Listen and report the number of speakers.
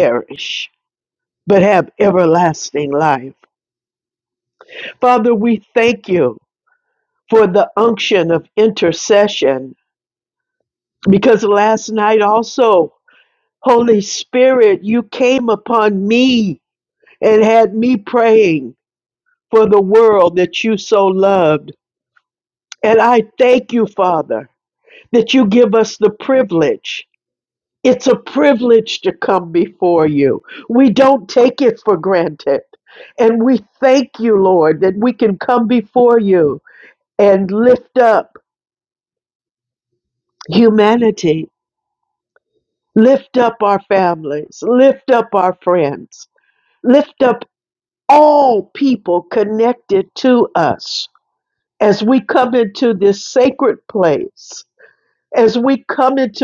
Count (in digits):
1